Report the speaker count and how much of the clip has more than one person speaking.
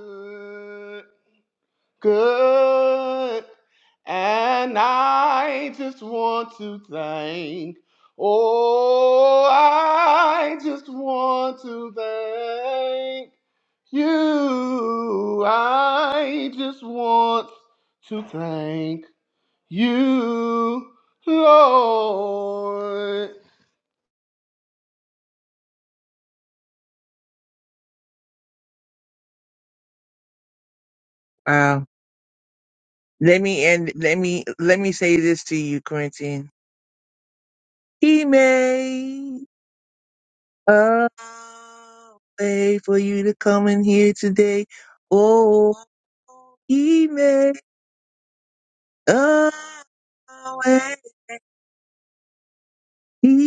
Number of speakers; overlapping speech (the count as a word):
two, no overlap